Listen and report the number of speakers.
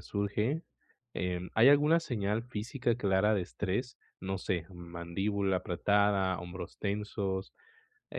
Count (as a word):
one